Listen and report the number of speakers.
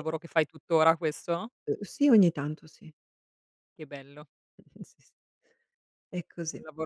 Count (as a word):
two